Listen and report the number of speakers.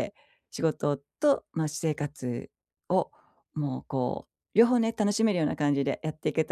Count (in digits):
1